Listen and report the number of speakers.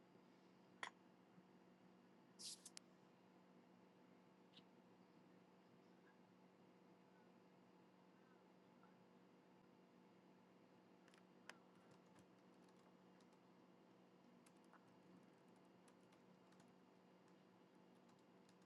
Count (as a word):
zero